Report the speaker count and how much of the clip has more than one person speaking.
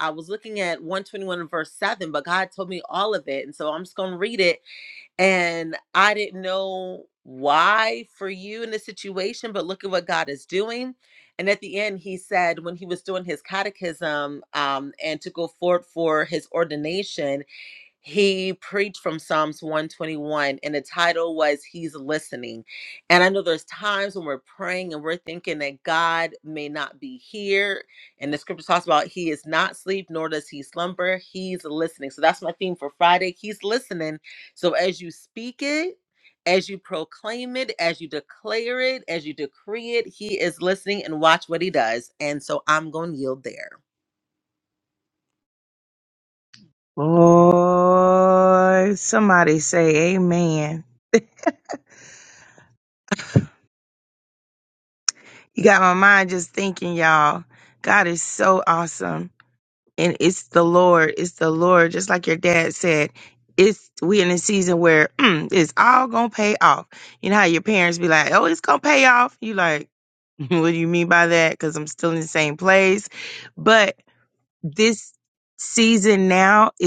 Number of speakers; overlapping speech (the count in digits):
2, no overlap